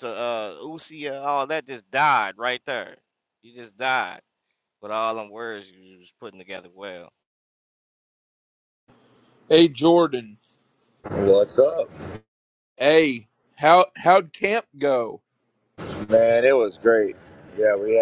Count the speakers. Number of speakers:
three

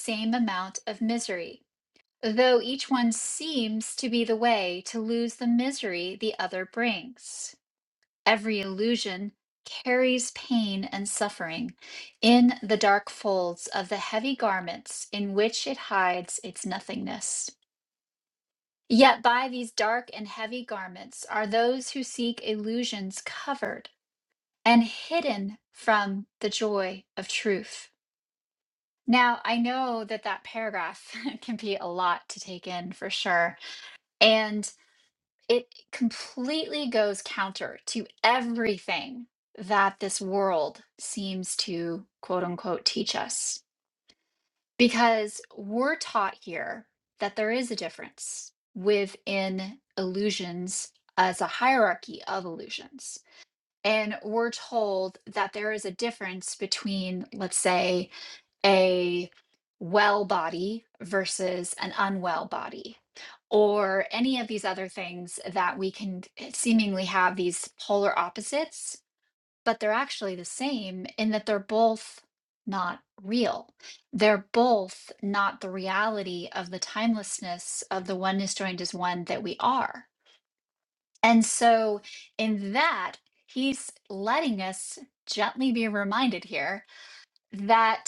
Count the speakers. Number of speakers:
one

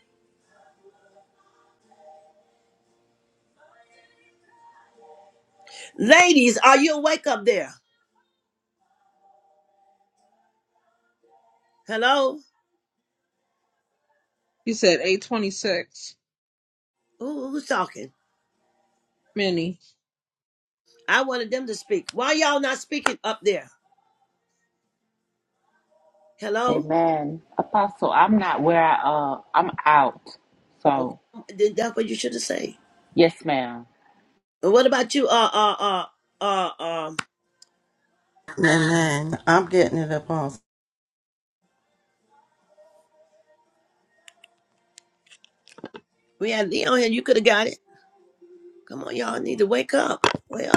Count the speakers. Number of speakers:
four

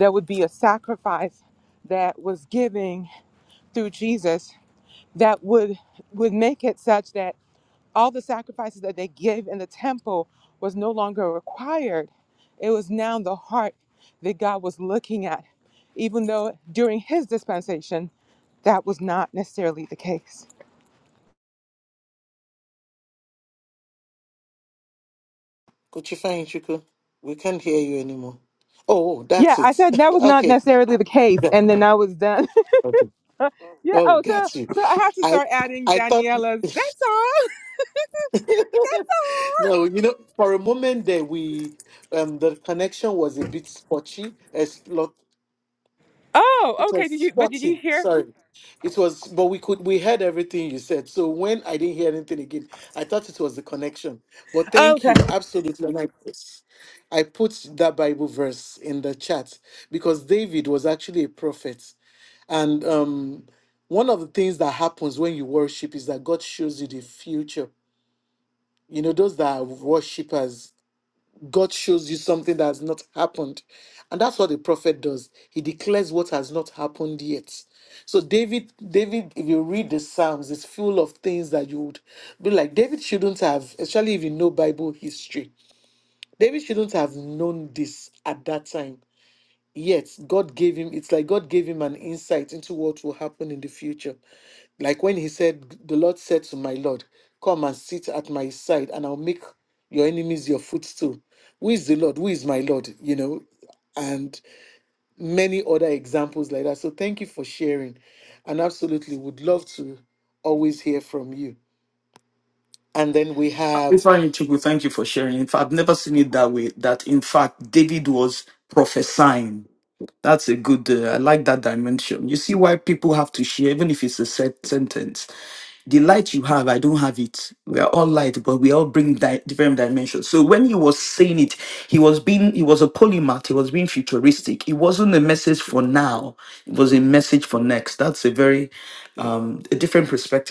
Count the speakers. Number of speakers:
three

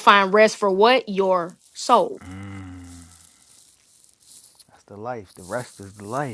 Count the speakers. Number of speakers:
two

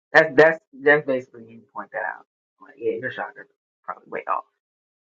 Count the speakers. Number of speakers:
one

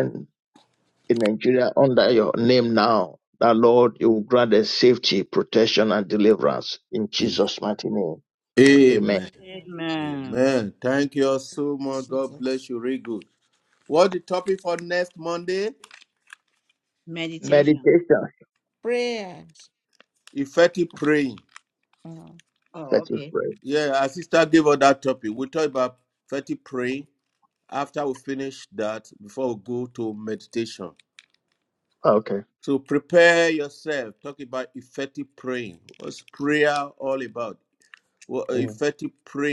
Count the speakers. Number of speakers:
four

